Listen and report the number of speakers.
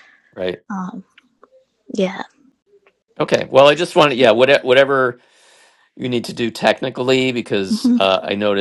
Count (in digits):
2